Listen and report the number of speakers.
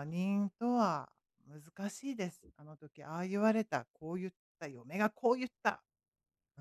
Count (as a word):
one